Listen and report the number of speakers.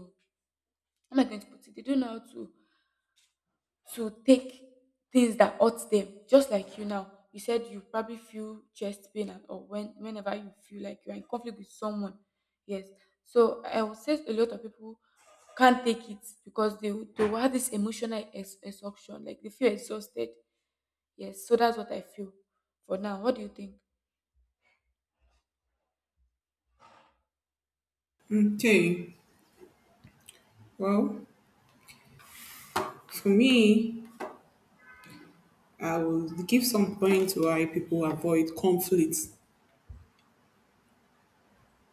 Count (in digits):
2